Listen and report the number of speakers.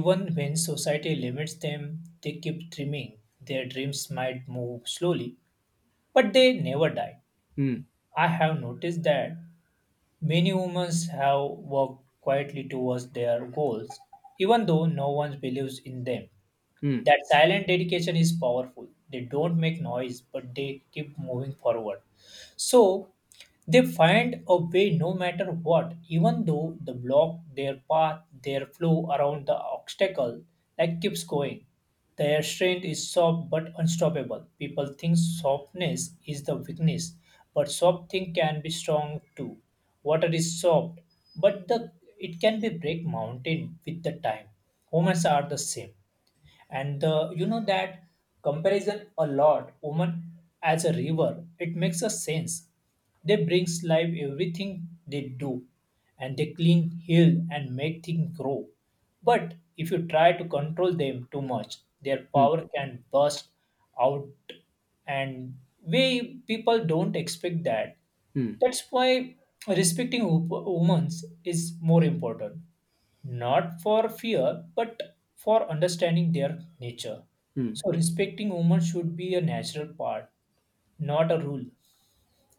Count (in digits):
2